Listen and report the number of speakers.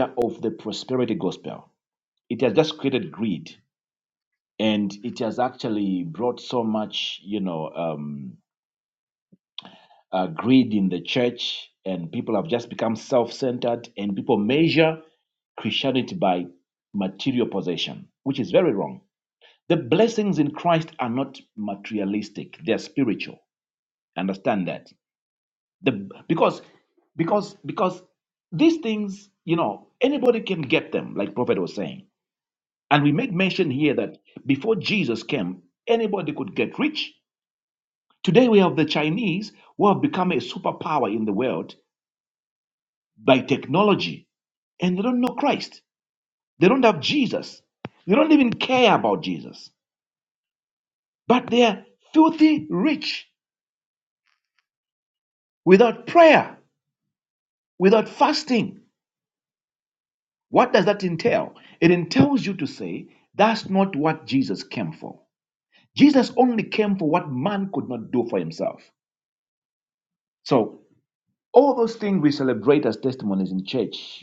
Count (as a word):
one